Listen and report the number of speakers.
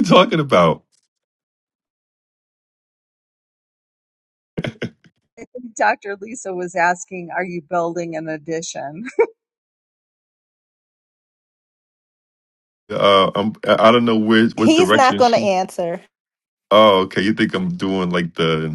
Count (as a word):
three